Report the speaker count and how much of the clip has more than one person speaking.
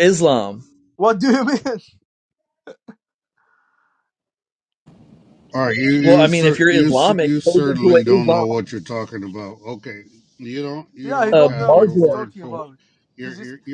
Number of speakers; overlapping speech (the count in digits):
3, about 31%